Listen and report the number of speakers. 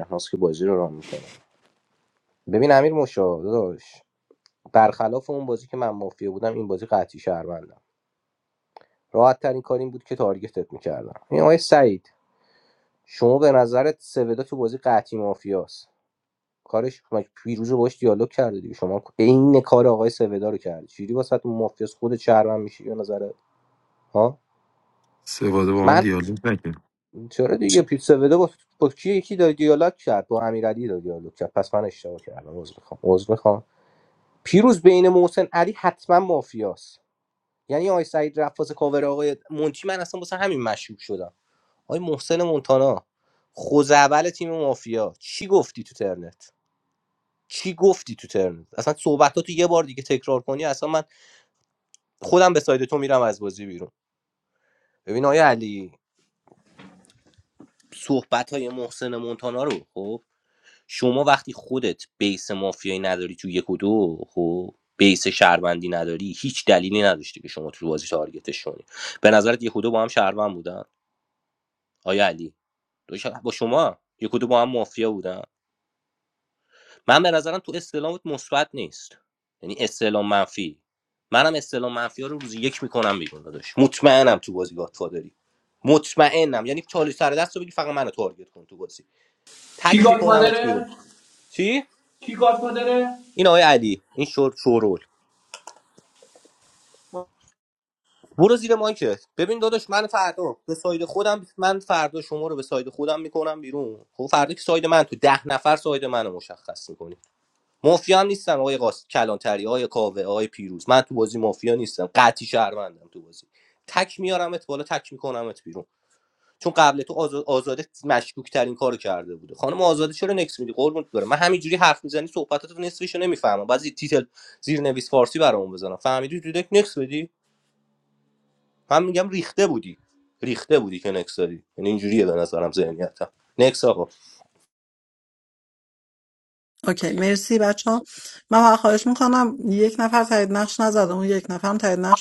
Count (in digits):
4